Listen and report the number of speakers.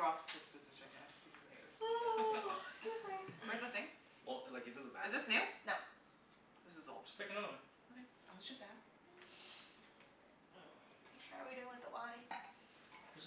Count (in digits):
4